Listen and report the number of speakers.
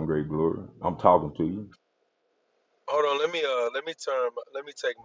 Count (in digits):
2